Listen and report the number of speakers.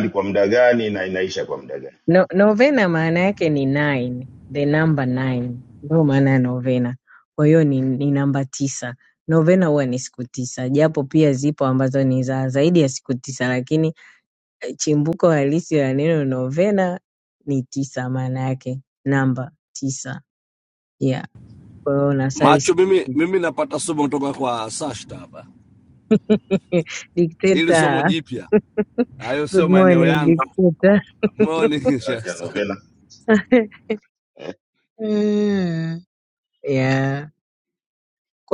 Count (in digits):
3